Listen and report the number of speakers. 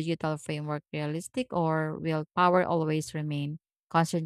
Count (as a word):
one